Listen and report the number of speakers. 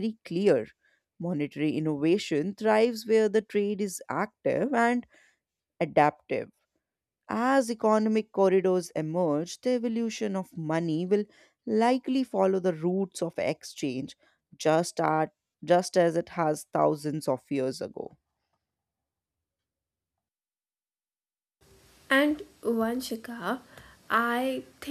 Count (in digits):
2